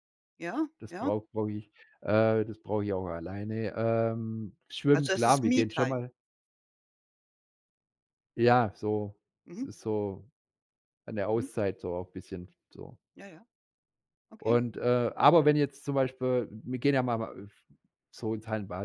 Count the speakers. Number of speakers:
two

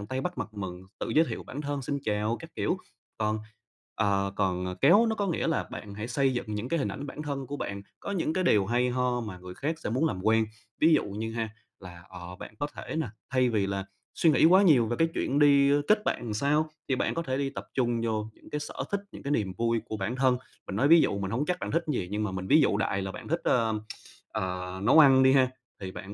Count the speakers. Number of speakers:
one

